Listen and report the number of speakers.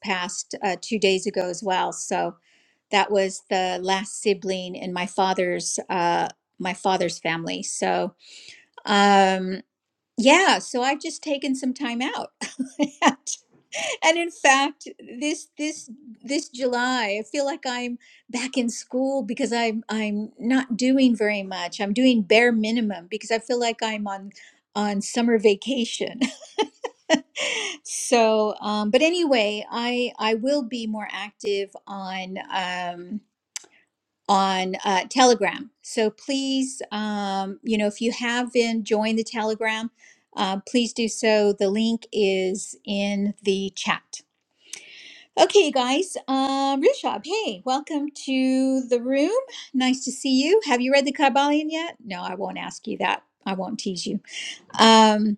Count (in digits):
1